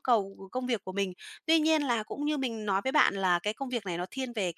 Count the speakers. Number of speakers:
1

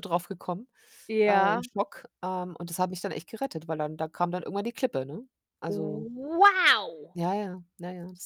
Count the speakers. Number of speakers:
2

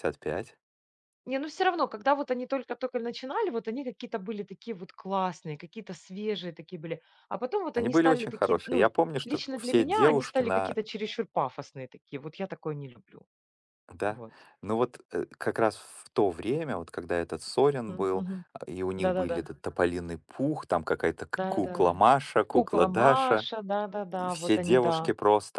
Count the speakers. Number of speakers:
2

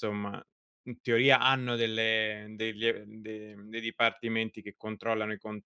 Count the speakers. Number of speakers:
1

